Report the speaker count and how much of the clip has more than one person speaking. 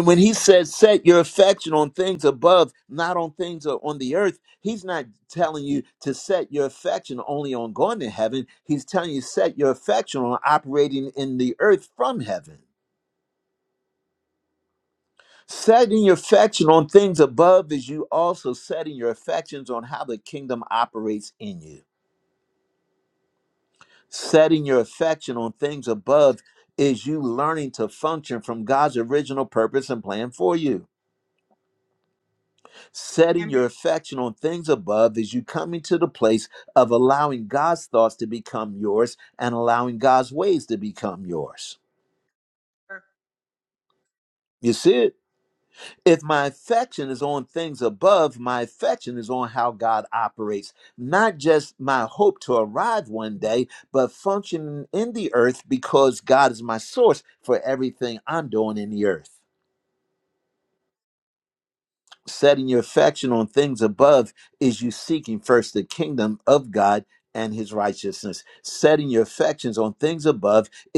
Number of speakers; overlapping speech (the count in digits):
1, no overlap